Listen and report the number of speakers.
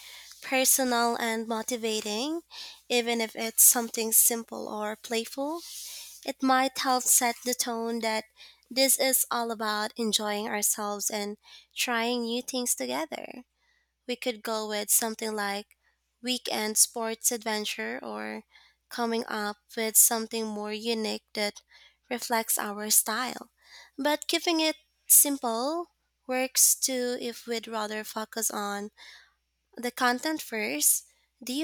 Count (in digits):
1